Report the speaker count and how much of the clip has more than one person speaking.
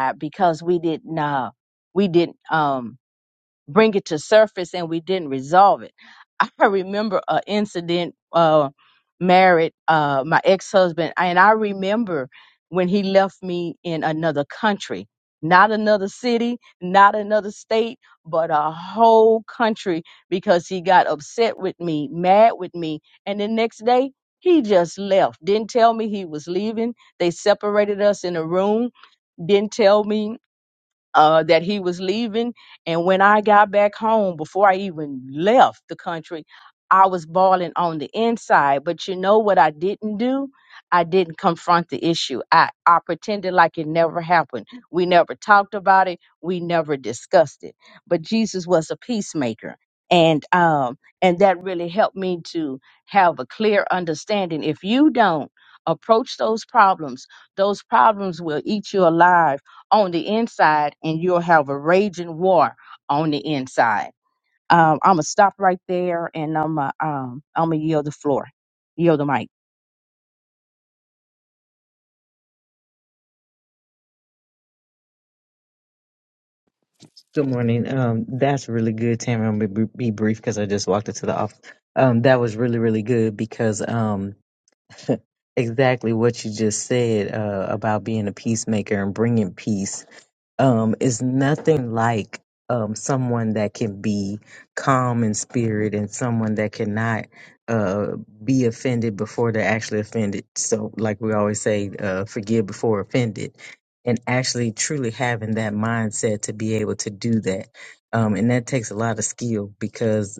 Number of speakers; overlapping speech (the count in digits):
2, no overlap